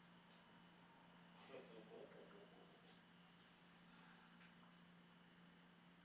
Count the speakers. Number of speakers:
one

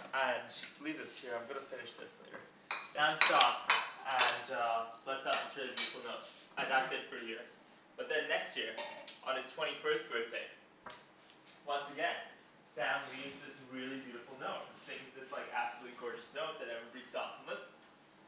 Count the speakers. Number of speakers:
one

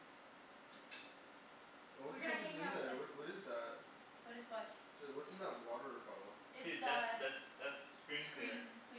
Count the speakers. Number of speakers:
three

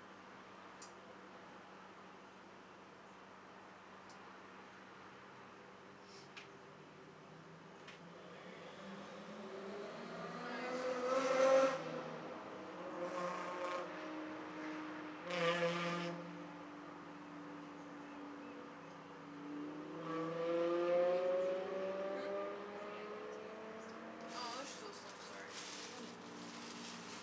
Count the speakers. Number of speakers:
two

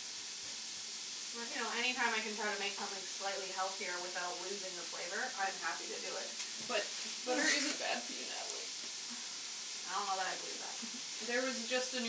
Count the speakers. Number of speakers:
two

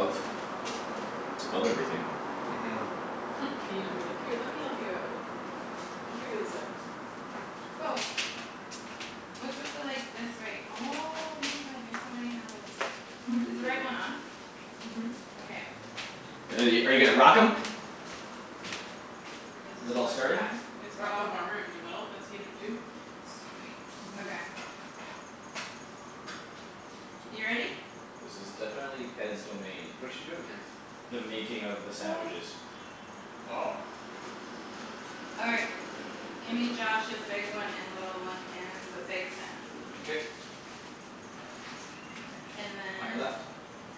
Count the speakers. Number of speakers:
four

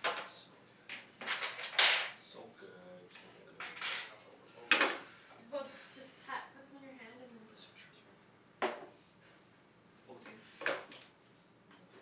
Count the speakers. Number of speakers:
three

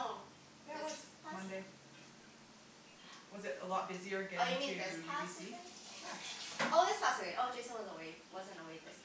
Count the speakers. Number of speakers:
two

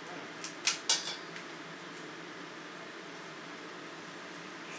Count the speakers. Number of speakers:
zero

